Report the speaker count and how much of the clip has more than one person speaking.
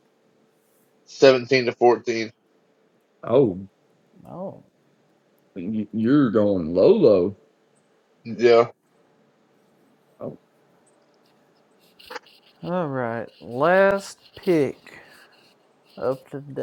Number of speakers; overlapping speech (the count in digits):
3, no overlap